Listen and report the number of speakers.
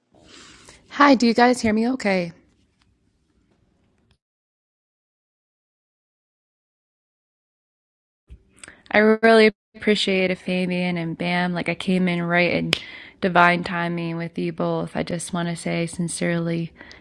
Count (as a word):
one